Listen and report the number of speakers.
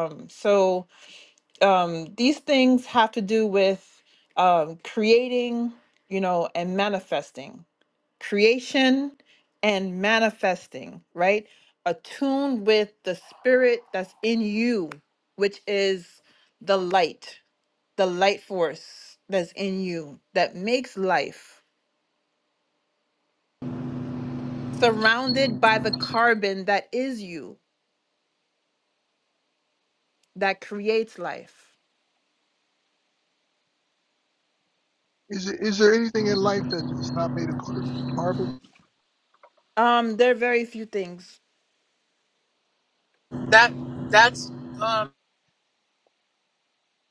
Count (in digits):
3